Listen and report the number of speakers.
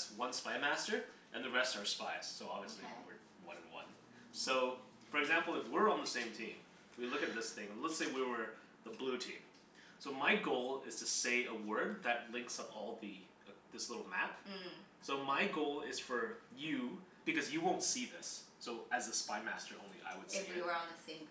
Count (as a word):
two